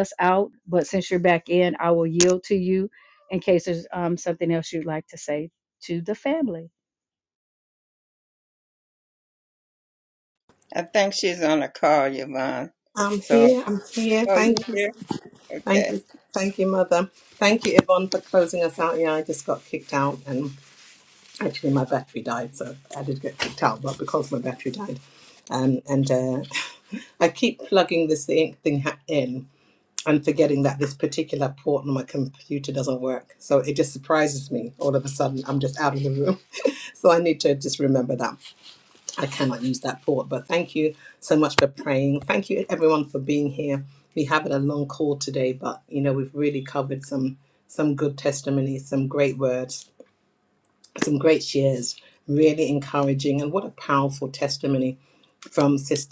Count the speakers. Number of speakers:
3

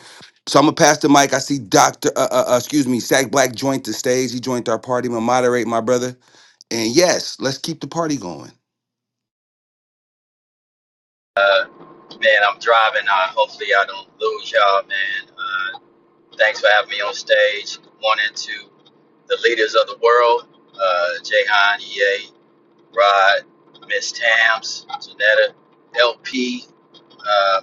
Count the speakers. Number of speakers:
2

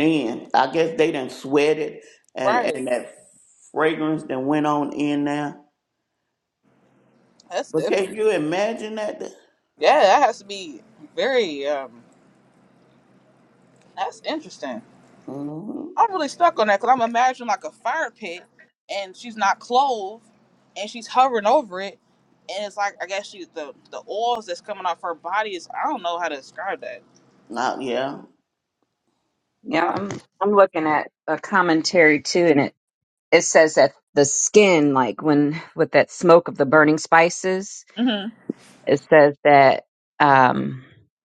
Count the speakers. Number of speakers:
3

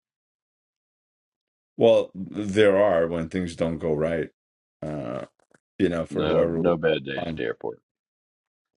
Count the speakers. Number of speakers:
2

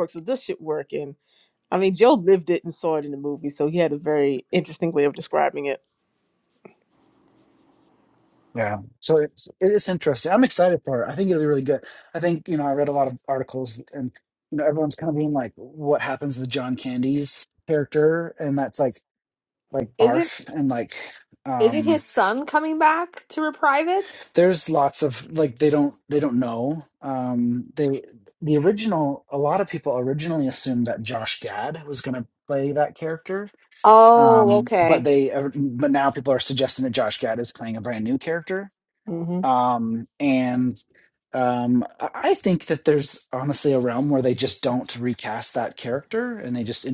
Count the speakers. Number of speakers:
3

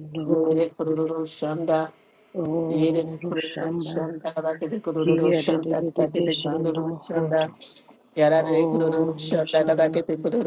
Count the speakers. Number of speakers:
2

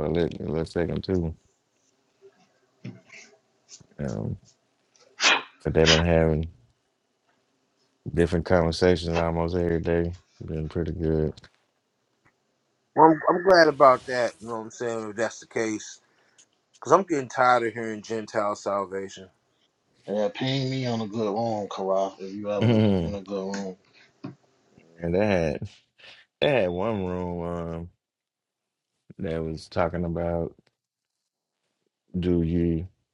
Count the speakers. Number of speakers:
3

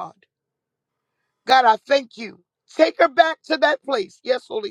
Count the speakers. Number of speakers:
1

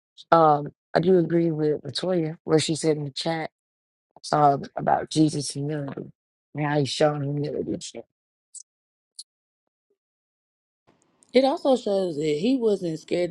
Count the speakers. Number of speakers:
2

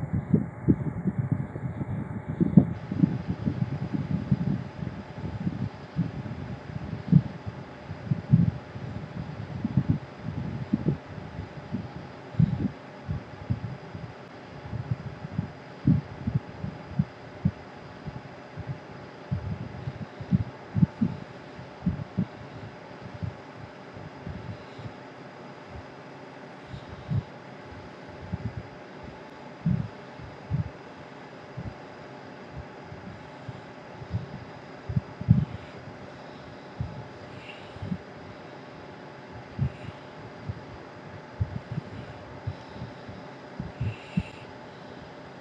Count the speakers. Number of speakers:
0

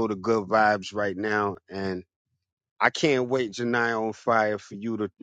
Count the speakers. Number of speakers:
1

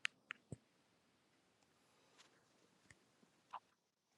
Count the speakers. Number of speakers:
0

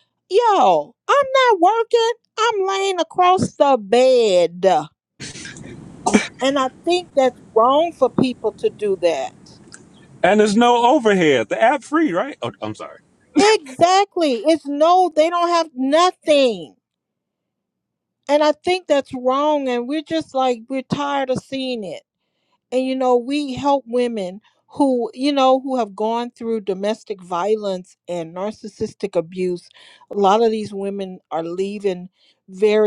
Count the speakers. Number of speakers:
2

